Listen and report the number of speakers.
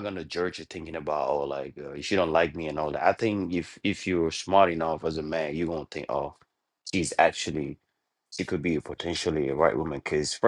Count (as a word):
one